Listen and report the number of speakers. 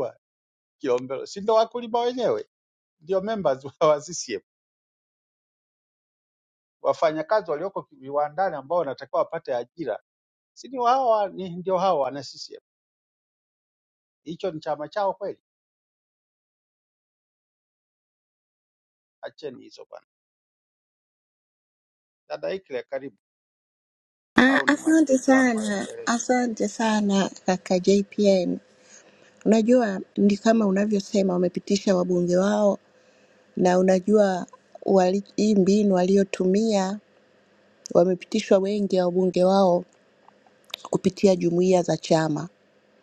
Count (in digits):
2